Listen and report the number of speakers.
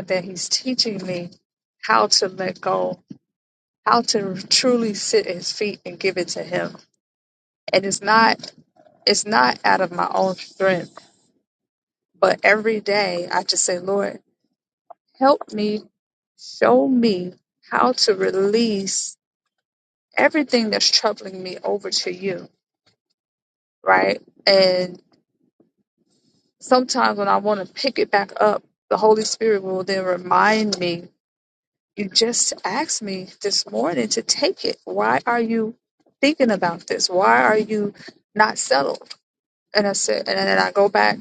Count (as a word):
one